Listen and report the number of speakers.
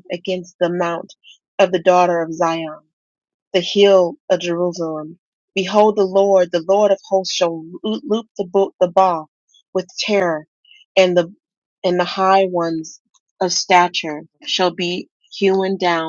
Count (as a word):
one